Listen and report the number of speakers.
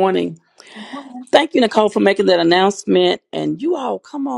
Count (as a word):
one